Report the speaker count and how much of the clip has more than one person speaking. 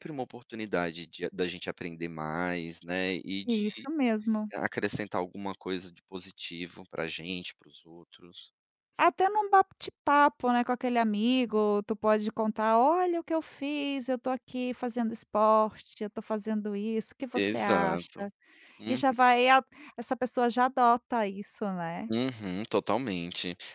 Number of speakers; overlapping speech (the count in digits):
2, about 5%